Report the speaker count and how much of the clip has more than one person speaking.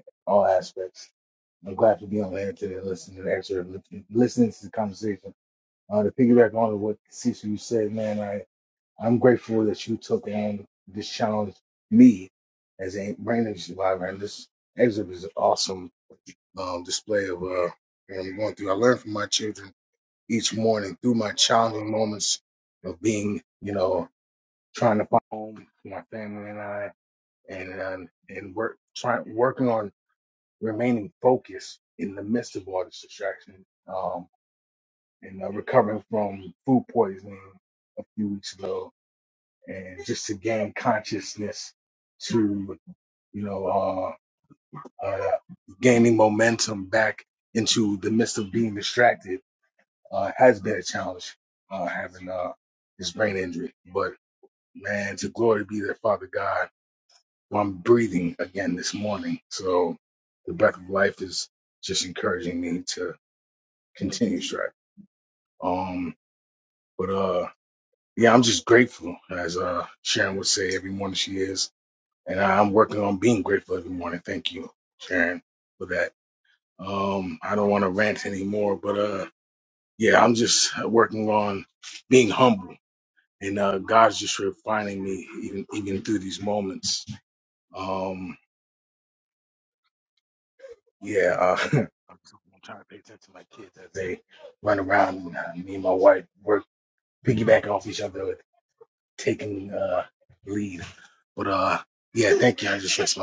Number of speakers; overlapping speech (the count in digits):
1, no overlap